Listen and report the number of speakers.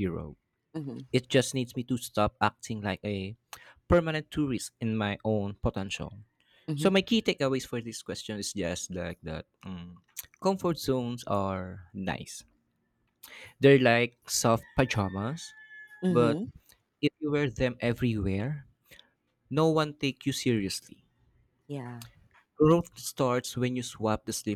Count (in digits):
2